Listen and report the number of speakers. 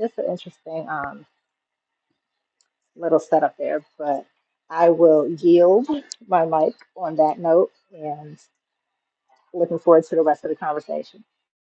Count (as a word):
one